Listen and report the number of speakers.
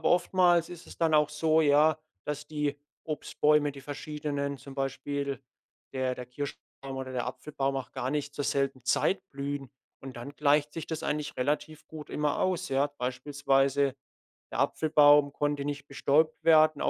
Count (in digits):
1